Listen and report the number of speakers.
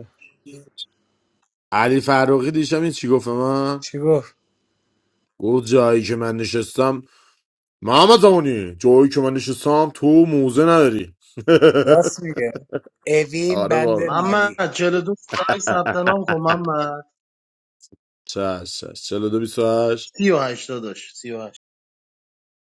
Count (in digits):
3